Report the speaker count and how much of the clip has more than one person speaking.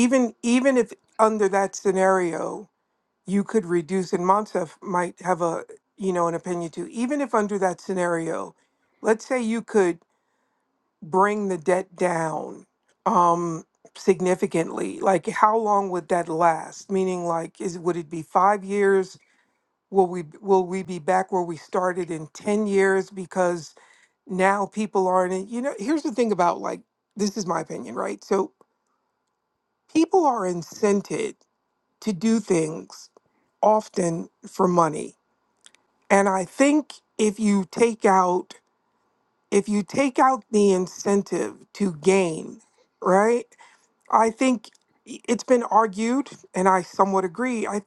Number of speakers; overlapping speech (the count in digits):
1, no overlap